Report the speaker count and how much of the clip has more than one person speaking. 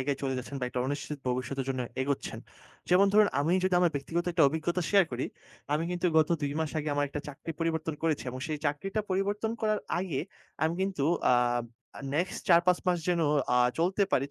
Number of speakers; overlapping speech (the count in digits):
1, no overlap